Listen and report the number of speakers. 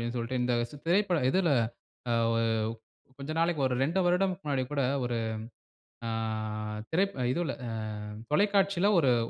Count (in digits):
1